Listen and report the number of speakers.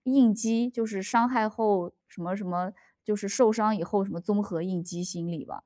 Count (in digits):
1